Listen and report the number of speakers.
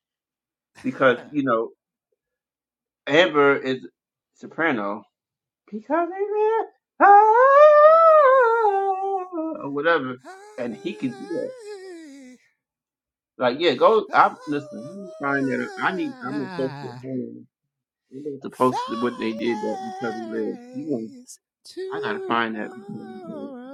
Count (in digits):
2